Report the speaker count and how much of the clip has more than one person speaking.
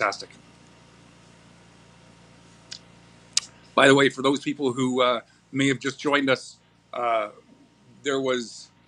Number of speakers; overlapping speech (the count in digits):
1, no overlap